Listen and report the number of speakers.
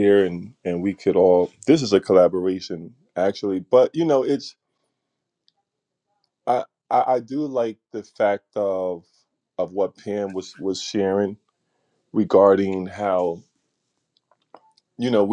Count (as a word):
one